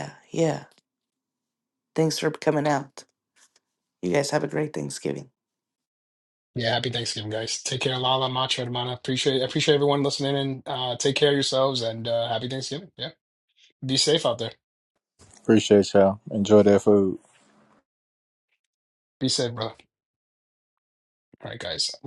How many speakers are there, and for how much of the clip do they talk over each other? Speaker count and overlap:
three, no overlap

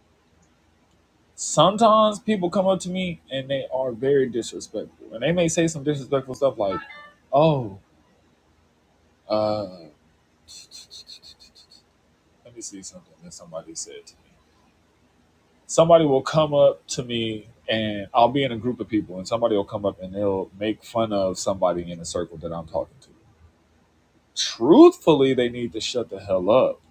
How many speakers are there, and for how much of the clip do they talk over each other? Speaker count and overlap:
one, no overlap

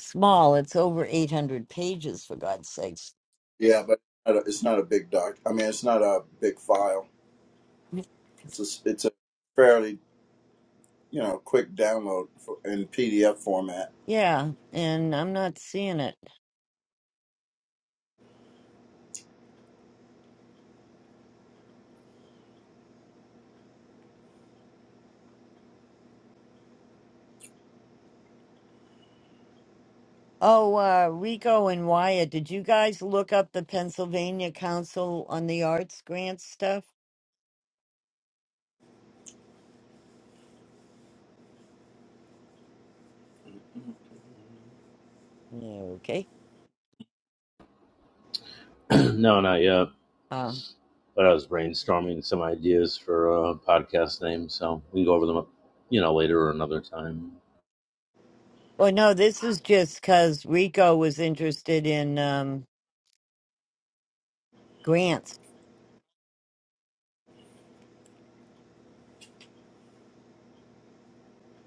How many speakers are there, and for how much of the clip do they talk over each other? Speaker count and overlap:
three, no overlap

